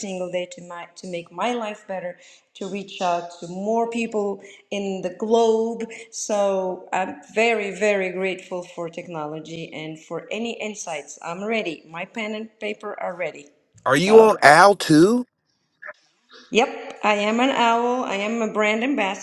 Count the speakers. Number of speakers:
2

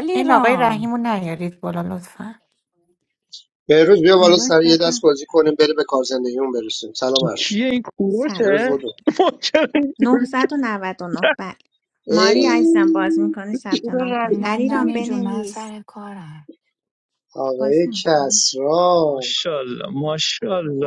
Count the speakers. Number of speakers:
5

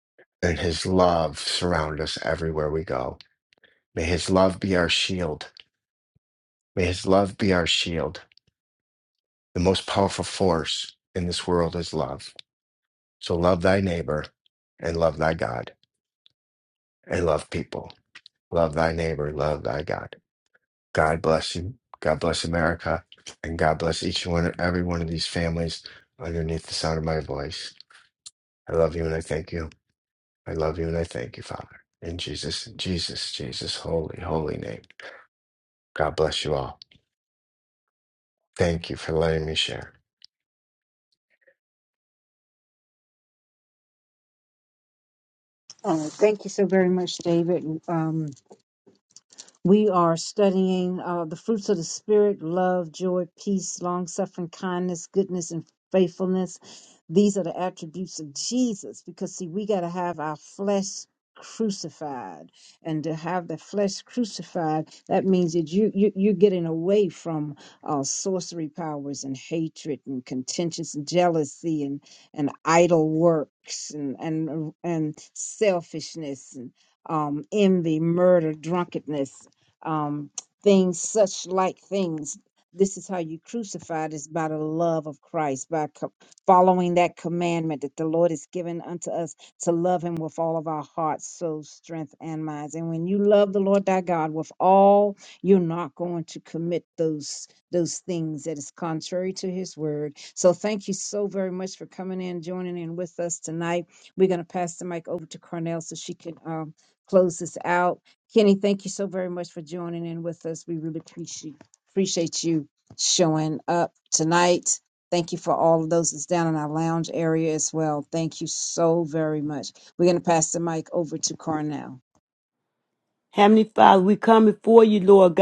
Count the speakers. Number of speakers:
3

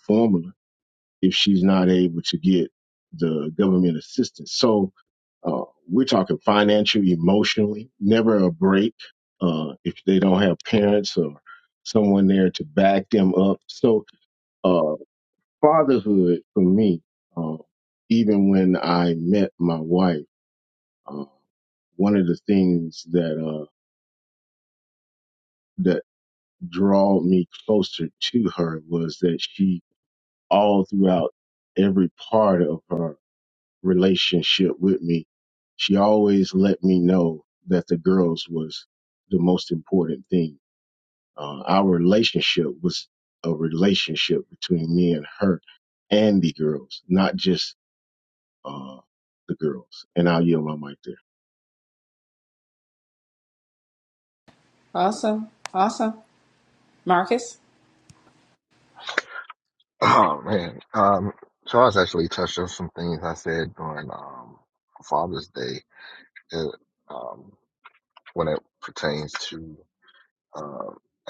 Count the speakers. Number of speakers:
3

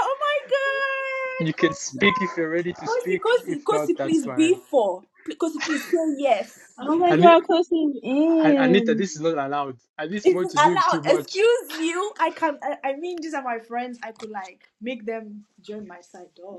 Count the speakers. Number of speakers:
3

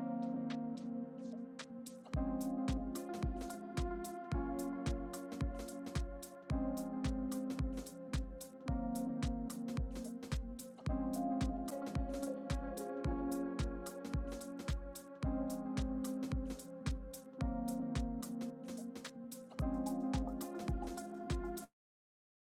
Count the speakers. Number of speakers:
0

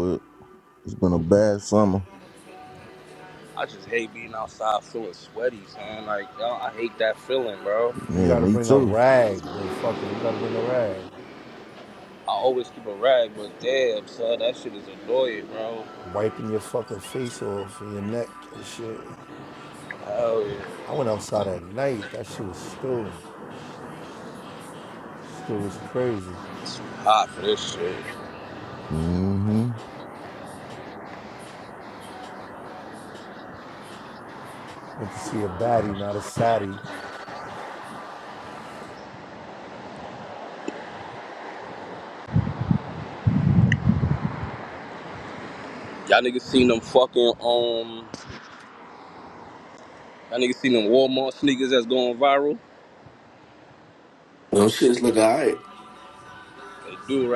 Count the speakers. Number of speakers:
4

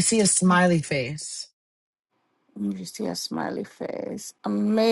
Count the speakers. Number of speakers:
2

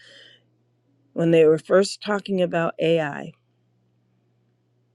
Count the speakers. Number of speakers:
1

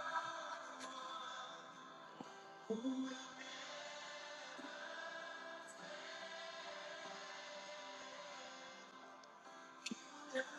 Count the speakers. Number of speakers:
0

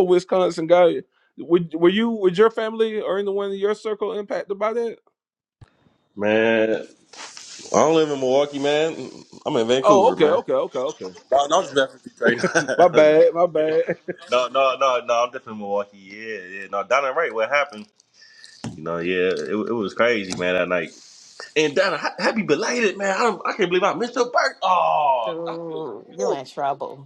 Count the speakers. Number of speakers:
3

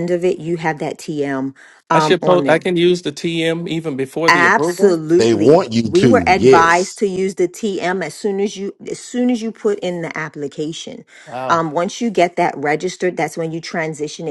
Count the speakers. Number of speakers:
3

